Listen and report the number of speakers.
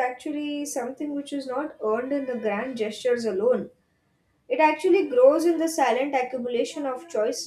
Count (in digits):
1